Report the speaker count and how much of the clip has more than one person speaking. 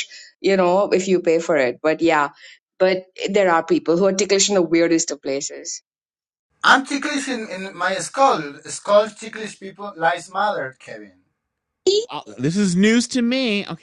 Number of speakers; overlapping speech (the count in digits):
3, no overlap